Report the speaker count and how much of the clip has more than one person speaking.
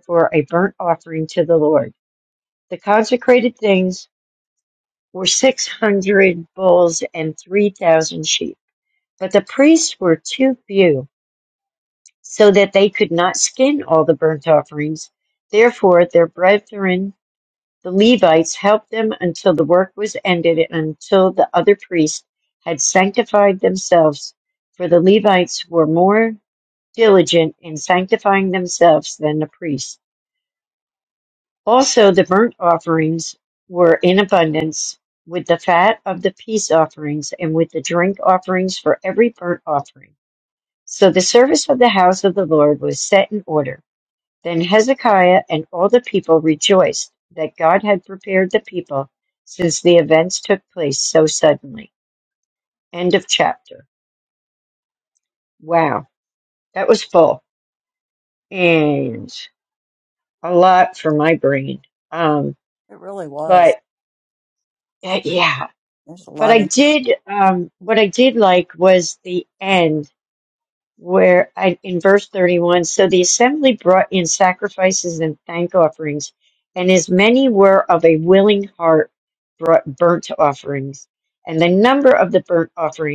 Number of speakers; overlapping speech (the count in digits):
2, about 1%